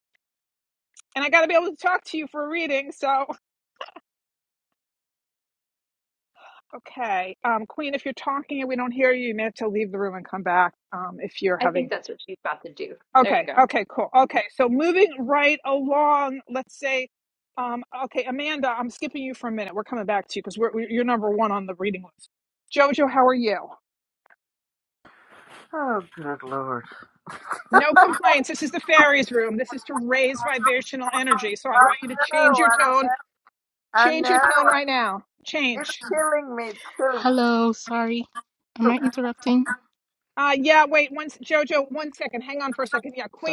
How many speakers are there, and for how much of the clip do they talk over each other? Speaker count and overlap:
four, about 7%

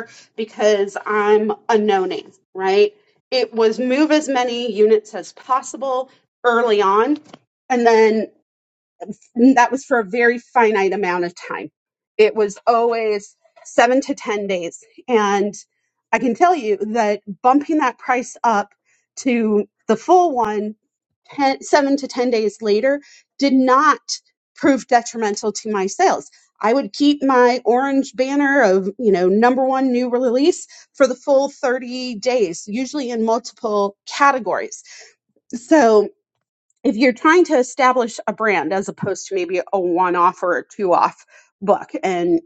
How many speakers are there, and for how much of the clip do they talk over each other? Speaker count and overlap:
one, no overlap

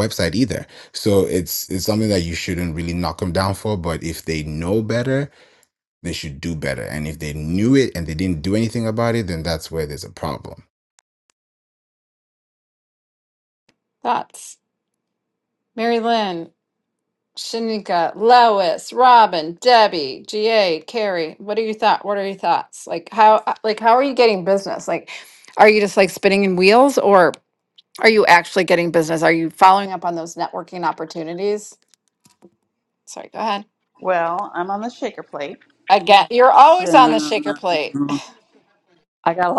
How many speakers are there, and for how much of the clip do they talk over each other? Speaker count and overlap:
three, about 1%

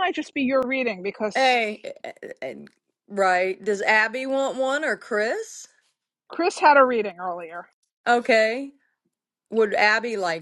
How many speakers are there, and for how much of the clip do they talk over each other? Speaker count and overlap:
two, no overlap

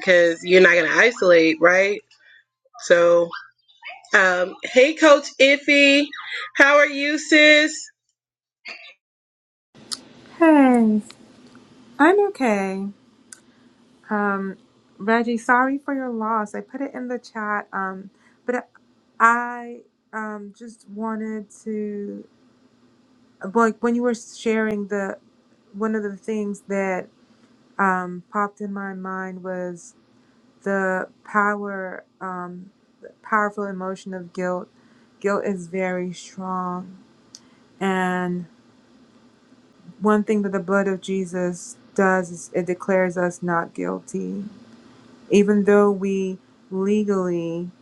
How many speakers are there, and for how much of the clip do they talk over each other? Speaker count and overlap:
two, no overlap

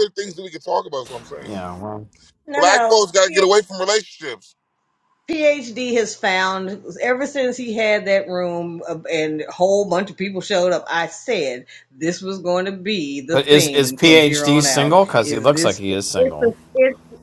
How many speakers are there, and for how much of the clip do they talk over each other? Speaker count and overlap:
three, about 21%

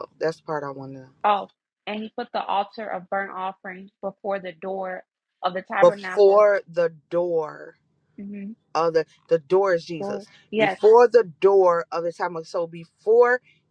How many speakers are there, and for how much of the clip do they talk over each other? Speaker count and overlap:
two, about 7%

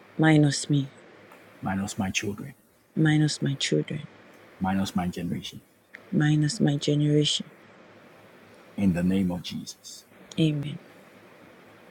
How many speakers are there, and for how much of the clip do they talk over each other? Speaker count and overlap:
two, no overlap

